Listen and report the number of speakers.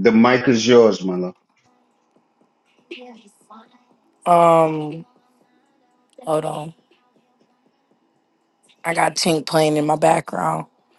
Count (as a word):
two